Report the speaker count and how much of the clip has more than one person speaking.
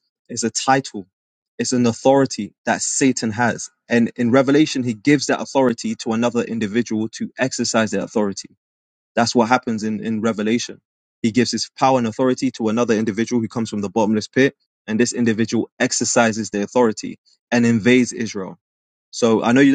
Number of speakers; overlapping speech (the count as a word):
one, no overlap